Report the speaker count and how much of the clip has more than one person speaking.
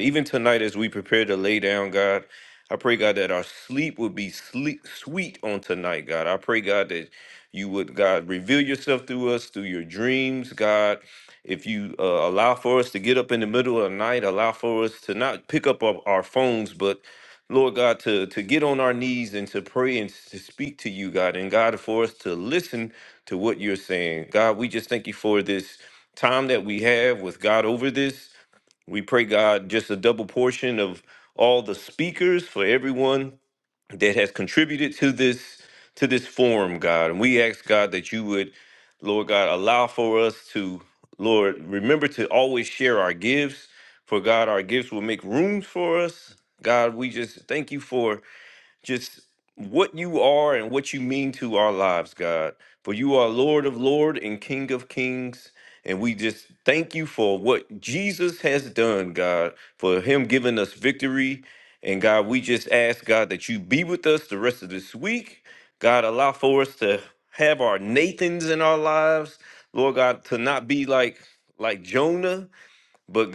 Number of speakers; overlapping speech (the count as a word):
one, no overlap